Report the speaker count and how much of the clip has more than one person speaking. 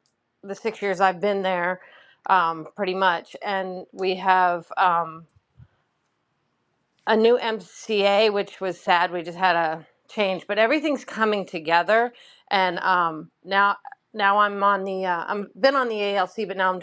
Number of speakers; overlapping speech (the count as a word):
one, no overlap